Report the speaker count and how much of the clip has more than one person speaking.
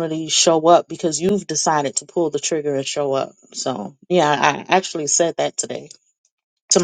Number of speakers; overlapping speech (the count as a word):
one, no overlap